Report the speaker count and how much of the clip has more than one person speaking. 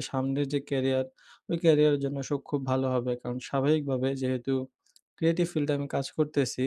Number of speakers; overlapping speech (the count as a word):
one, no overlap